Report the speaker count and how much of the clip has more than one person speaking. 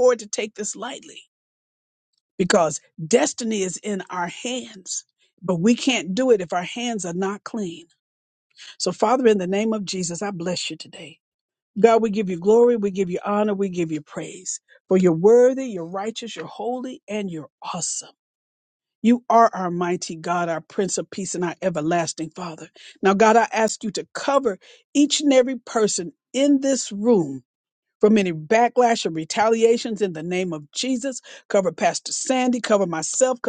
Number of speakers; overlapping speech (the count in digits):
1, no overlap